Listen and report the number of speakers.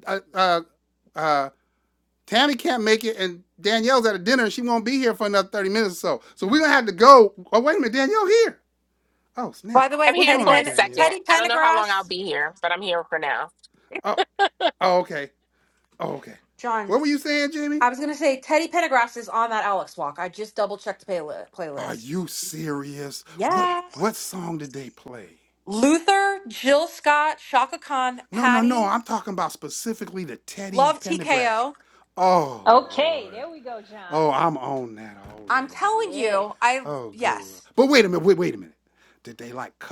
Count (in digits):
4